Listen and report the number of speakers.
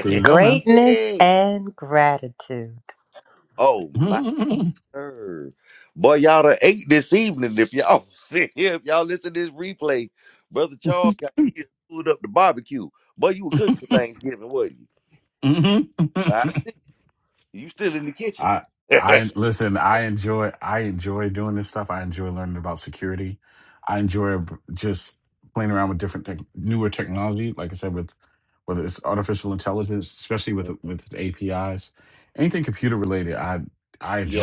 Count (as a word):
three